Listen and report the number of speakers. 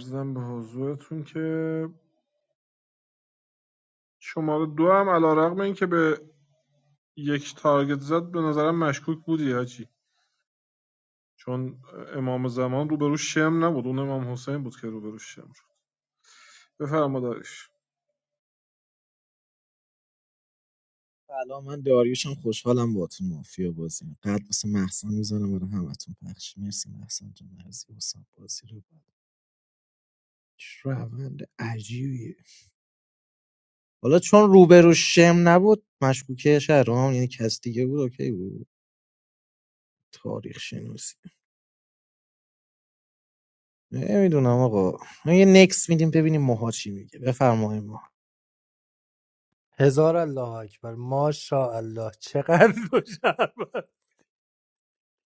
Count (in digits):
3